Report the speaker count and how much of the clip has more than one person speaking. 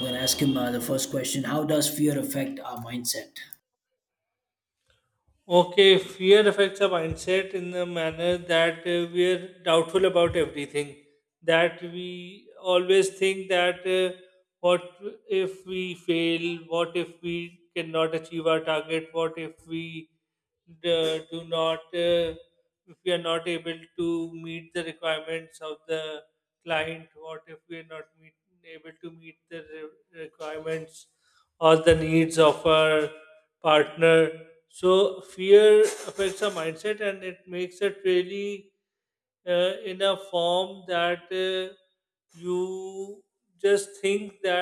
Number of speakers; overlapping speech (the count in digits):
2, no overlap